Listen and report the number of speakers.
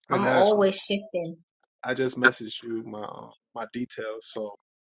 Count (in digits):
2